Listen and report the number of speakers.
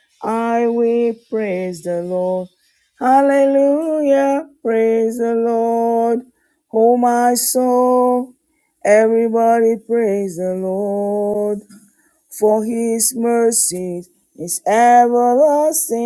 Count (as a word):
one